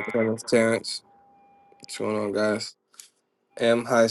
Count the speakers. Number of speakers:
1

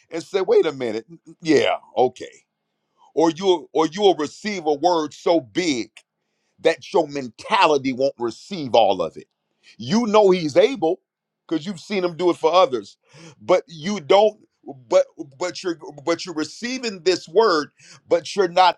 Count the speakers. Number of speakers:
1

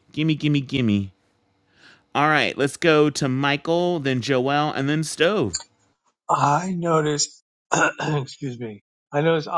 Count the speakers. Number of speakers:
2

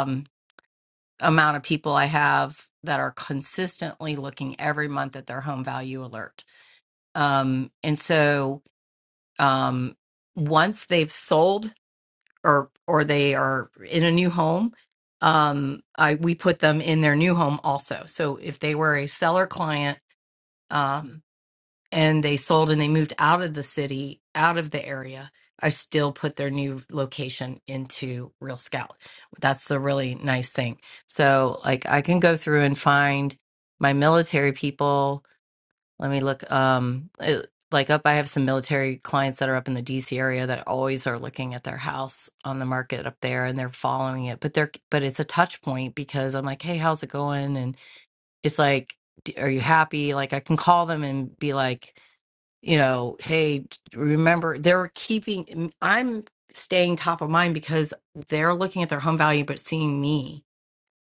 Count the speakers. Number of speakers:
1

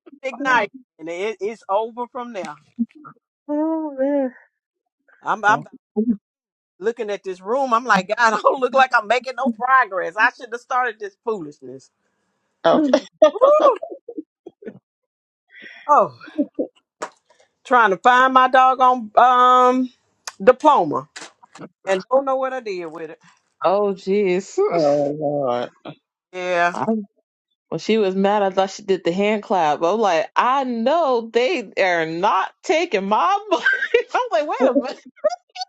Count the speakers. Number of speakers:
3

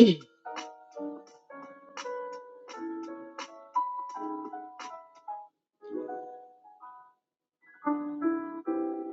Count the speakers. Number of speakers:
0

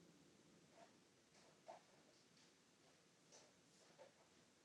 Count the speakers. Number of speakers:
0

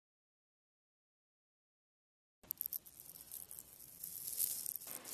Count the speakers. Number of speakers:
0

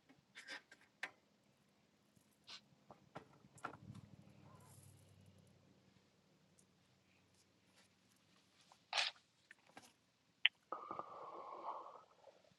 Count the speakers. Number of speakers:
0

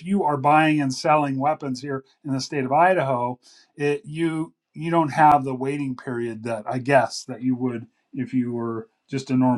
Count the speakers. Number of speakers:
1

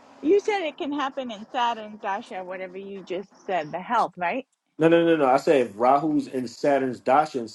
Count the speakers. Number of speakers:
2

